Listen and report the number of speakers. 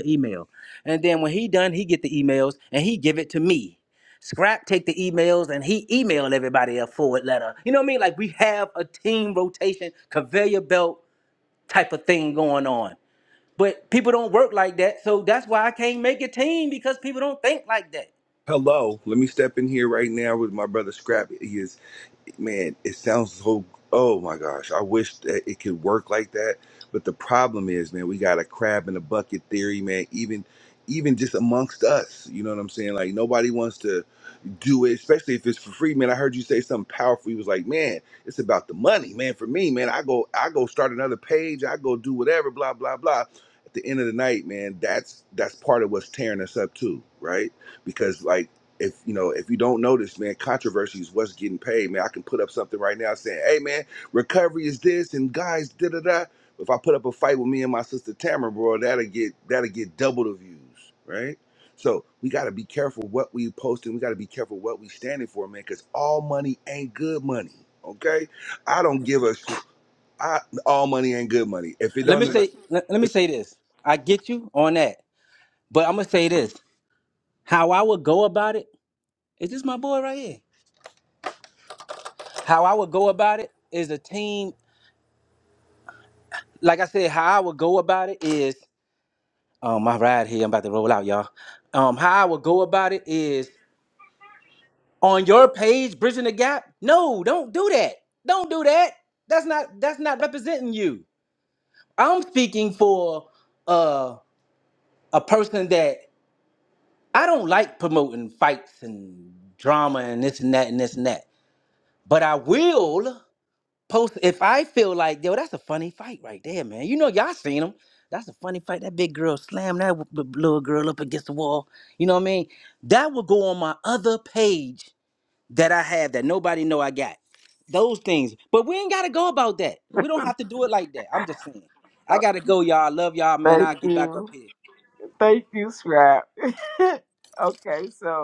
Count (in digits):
3